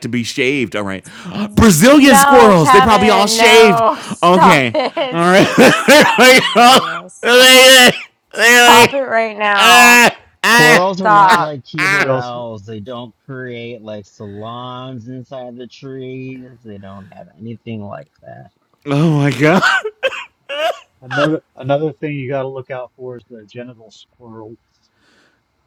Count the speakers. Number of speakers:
4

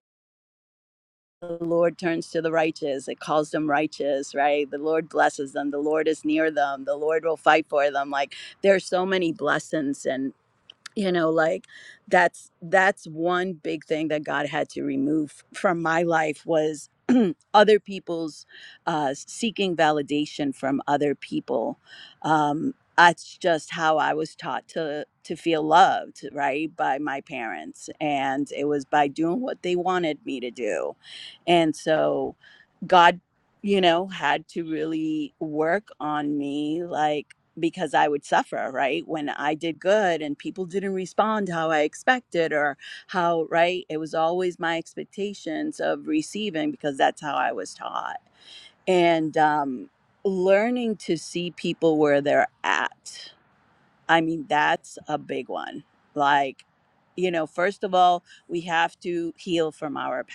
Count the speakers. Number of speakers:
1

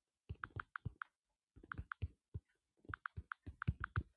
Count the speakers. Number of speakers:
0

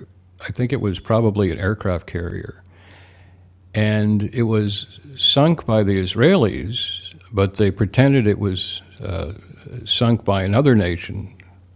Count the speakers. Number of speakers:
1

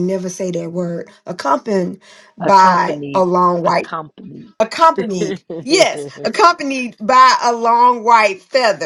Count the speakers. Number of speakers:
2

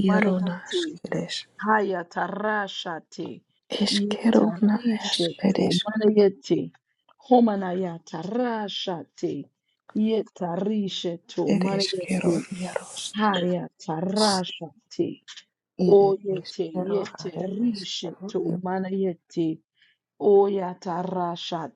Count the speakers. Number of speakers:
2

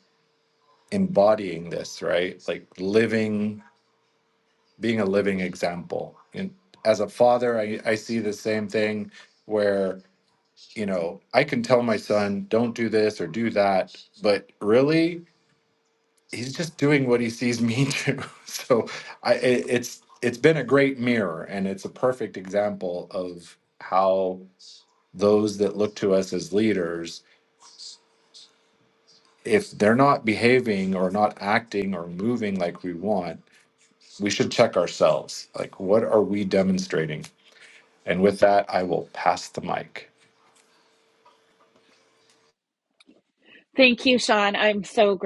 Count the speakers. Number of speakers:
2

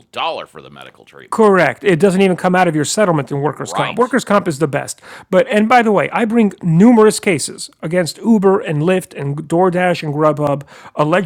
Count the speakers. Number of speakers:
2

